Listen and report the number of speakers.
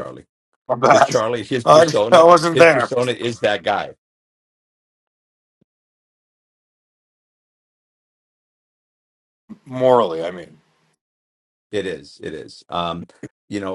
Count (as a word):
two